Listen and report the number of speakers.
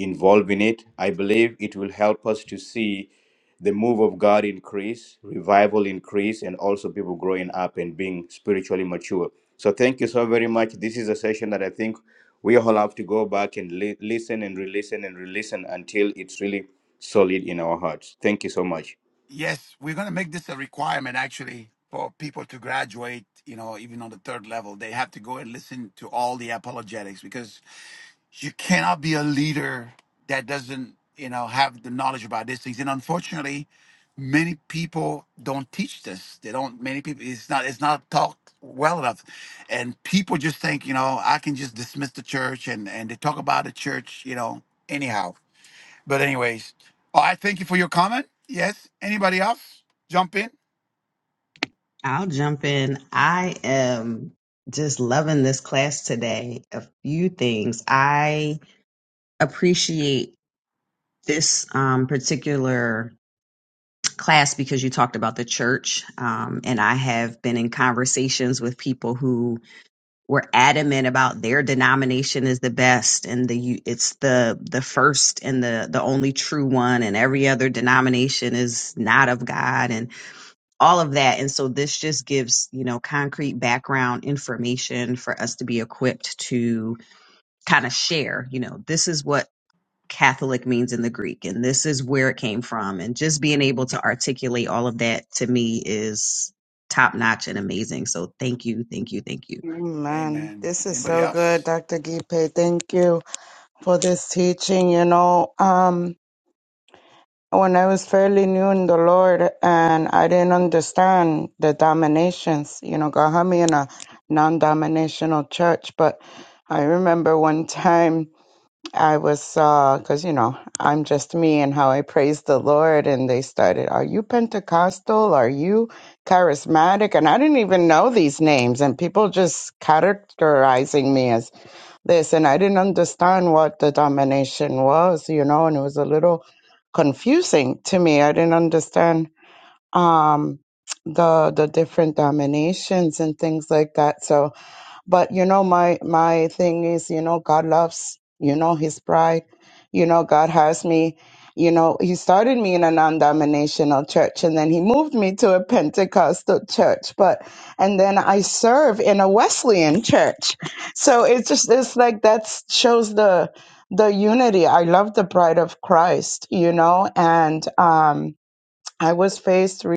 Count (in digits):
4